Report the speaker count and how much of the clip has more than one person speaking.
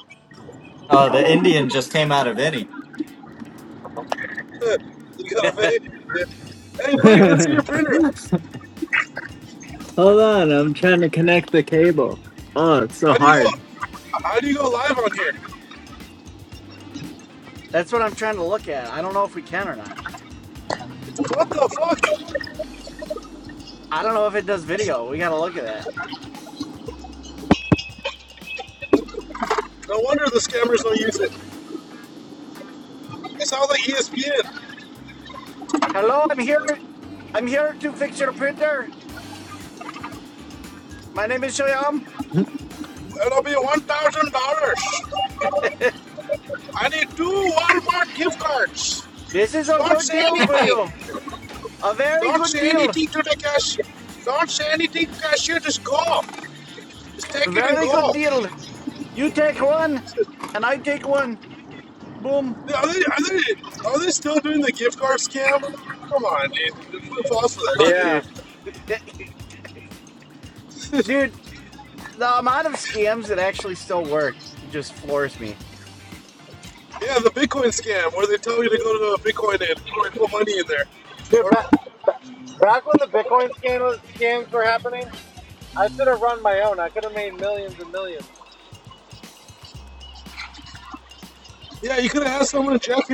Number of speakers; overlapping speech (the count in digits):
4, about 5%